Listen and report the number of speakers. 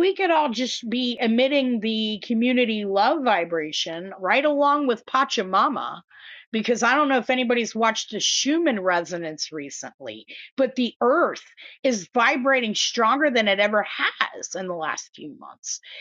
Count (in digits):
1